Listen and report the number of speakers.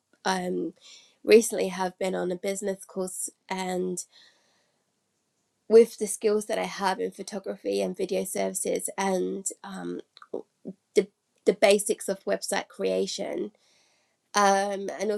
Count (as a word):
one